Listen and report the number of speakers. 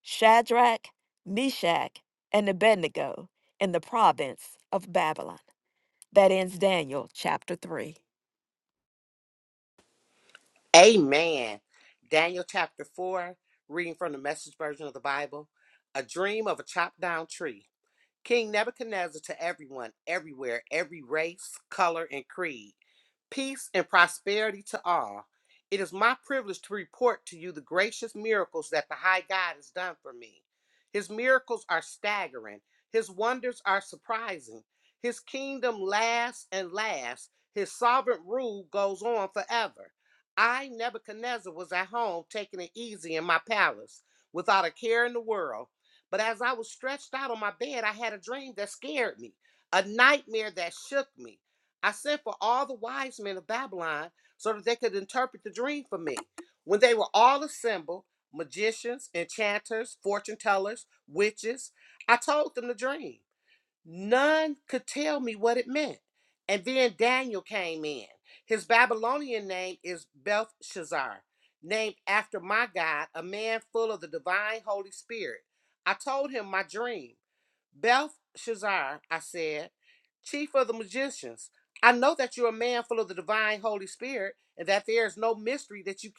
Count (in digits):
2